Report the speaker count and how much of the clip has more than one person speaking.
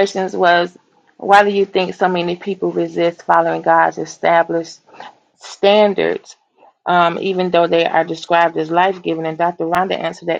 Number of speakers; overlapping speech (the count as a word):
one, no overlap